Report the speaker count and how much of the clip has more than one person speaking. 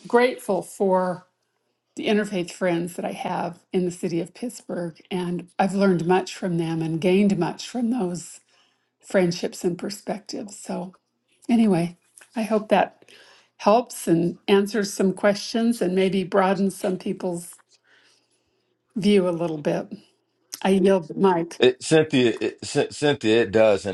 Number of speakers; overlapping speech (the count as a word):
two, no overlap